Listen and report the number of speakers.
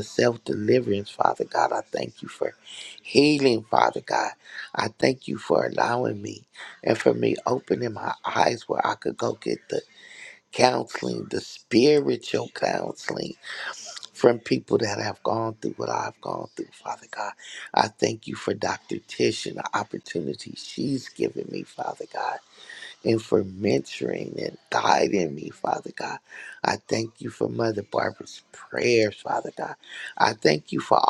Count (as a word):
one